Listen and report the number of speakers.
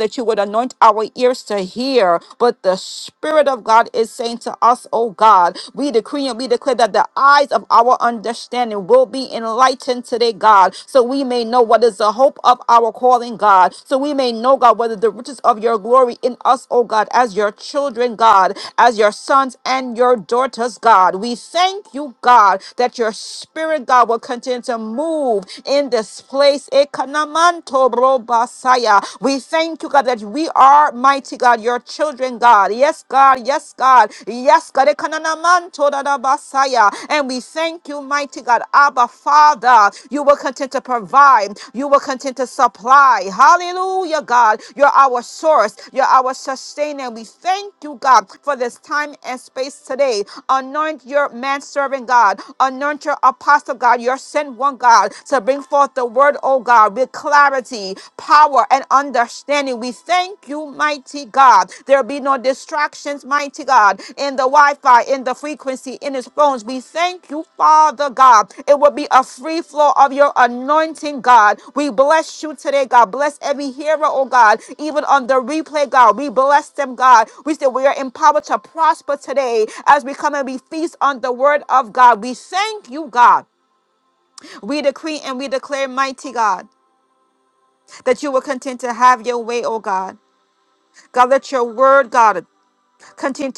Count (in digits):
1